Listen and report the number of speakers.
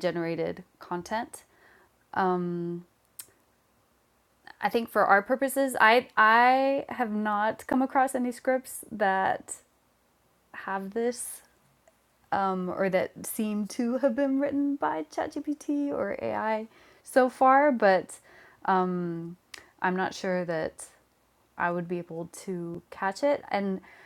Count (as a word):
one